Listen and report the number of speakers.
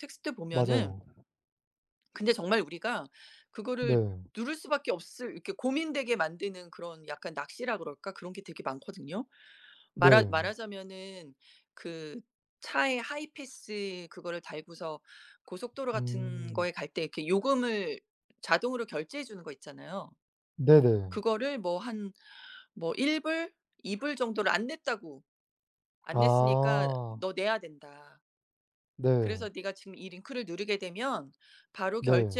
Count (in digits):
2